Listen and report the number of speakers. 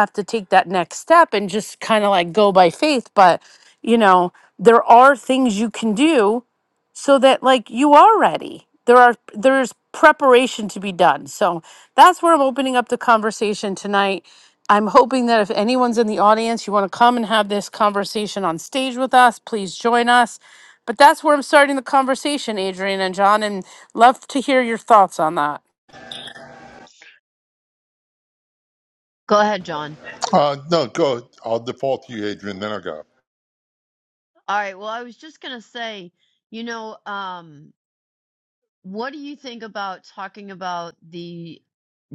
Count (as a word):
three